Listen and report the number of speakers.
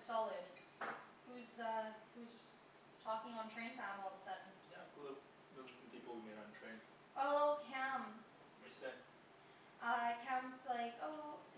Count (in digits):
2